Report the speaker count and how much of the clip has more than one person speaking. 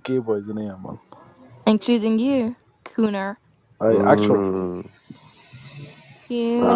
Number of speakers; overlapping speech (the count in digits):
3, about 11%